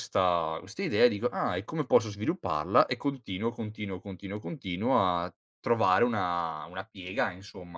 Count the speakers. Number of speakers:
one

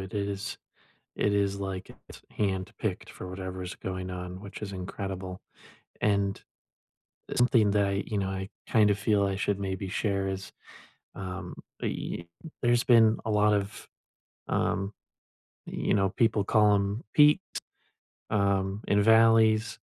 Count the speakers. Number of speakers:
one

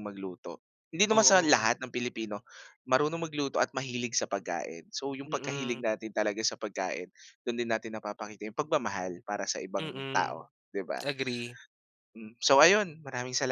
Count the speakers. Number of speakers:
two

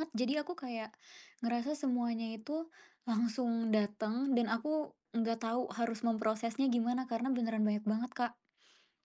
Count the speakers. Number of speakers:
one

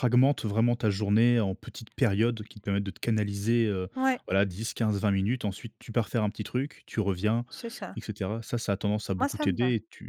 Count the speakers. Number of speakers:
two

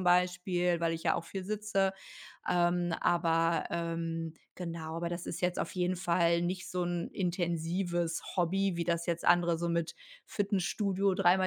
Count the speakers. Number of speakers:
one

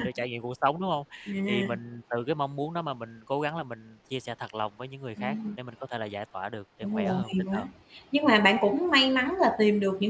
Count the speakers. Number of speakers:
two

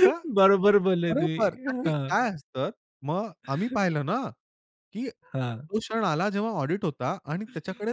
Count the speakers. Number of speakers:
two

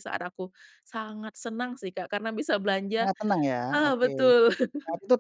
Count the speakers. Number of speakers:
two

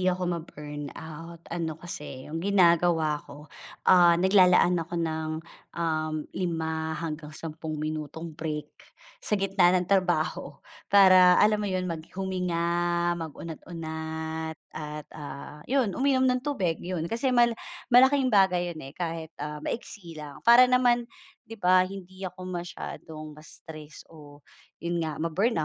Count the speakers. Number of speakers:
one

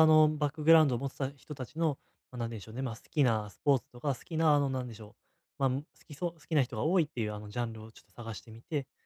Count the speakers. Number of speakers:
one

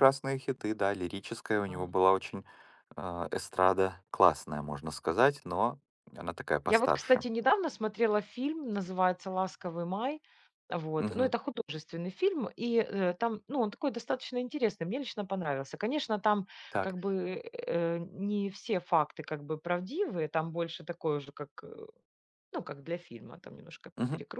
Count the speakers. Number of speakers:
two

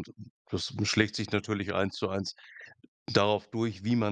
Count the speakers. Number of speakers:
one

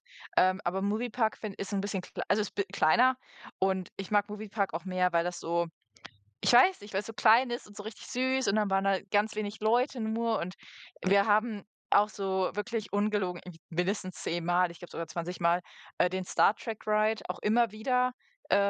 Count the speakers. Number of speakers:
one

